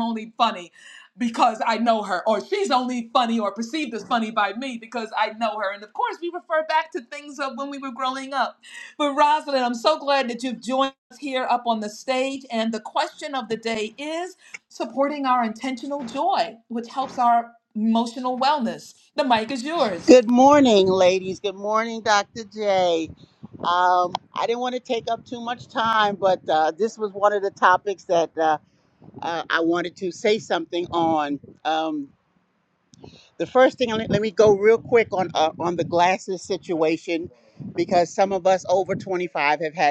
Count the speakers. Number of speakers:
two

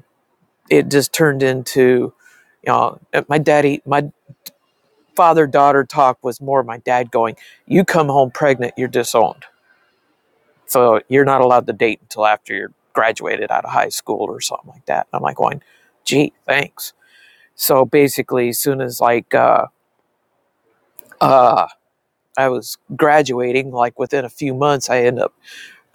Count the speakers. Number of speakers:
one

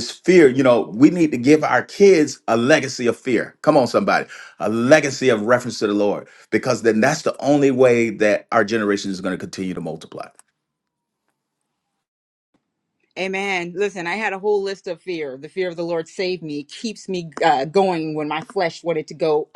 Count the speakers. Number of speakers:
two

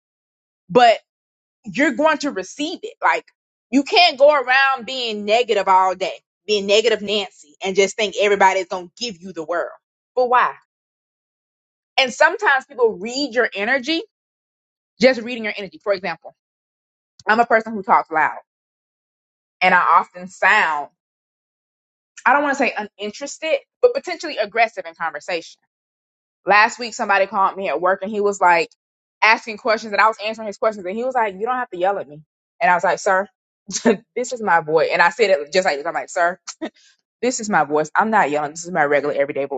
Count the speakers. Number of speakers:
one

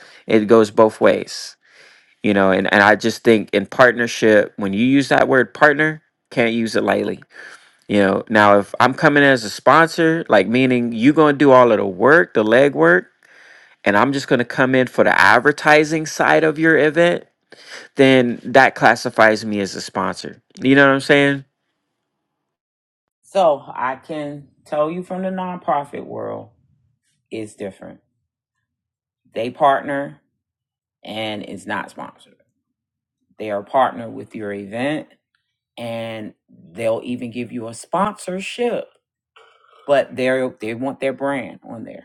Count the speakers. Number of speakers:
two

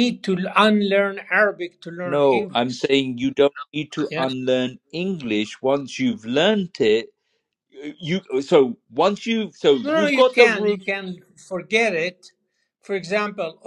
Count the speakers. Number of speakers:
two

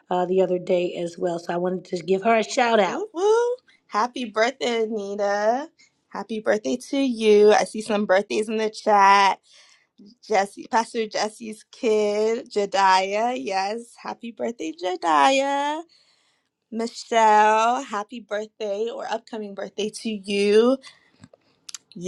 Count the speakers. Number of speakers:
two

